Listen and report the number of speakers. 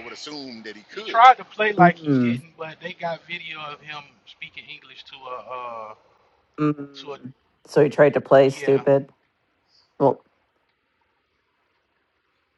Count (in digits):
3